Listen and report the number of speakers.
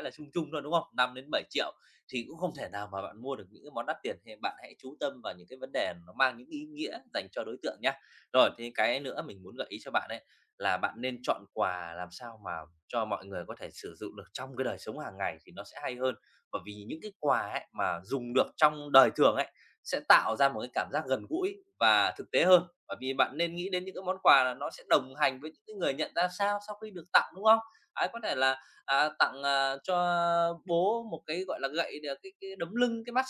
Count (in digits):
1